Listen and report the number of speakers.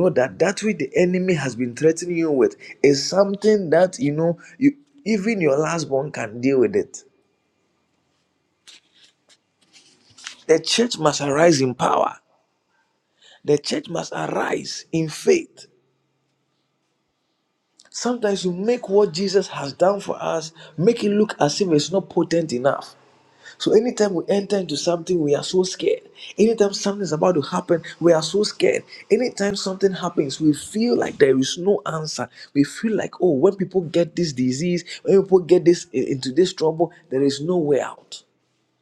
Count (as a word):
one